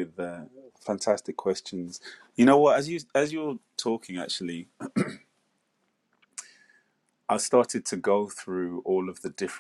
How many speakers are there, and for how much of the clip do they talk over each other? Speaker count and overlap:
1, no overlap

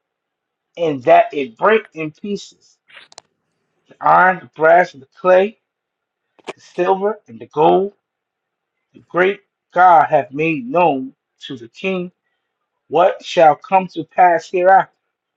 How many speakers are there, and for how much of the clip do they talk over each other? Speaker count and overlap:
1, no overlap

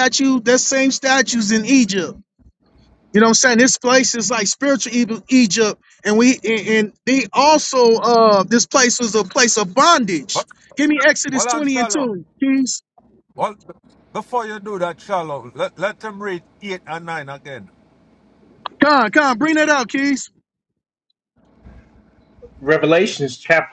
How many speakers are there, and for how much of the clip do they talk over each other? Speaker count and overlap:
3, about 4%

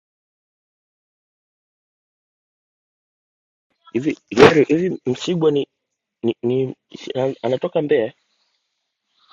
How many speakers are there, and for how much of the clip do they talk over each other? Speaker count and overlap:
1, no overlap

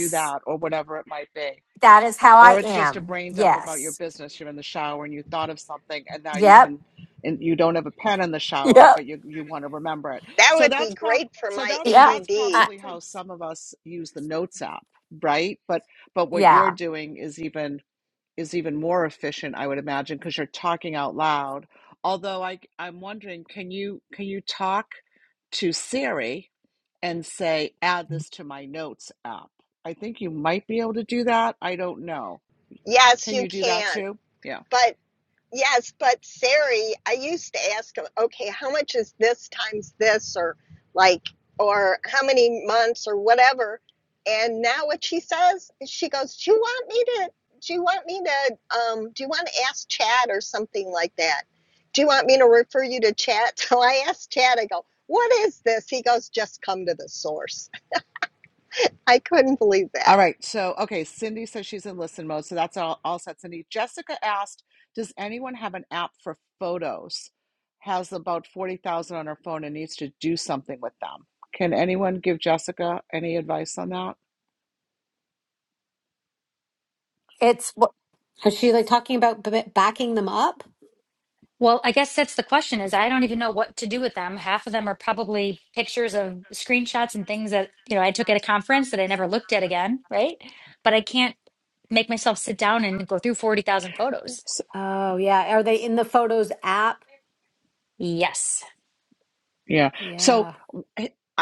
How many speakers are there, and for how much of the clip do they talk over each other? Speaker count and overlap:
5, about 5%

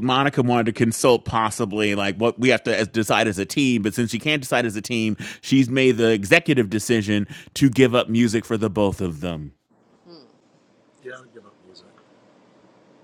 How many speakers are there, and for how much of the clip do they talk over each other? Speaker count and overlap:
1, no overlap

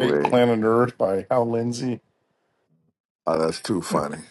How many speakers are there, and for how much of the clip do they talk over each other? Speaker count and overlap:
2, about 8%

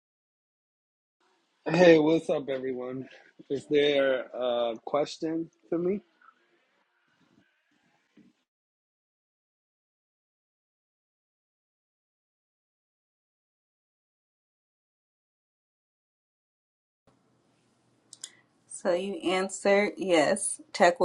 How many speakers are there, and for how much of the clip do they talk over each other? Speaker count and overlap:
2, no overlap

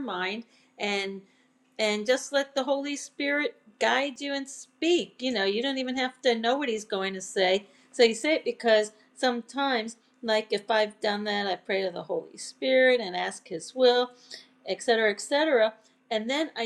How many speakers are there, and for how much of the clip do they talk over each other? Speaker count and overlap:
1, no overlap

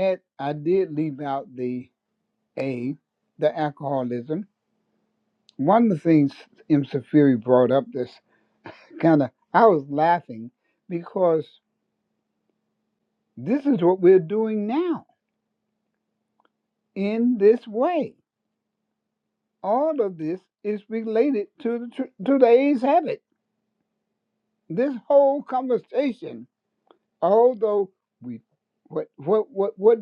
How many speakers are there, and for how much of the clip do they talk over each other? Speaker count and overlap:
1, no overlap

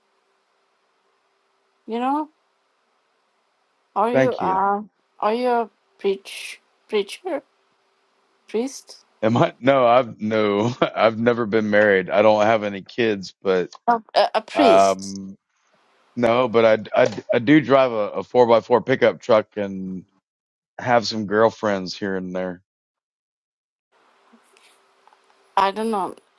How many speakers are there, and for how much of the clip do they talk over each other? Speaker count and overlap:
2, about 3%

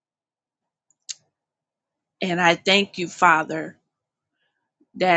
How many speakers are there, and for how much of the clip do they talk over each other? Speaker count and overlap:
1, no overlap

